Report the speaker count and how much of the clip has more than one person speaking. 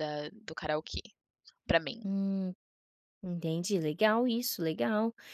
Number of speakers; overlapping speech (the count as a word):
two, no overlap